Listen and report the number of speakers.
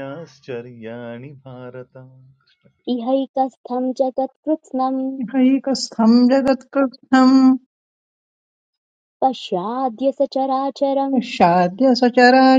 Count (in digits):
3